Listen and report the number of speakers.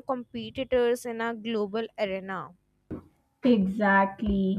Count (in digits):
2